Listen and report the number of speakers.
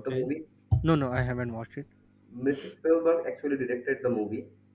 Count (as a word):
two